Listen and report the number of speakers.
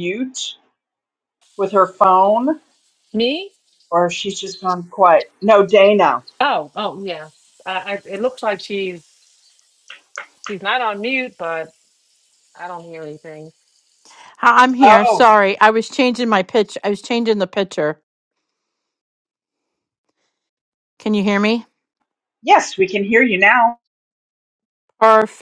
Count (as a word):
three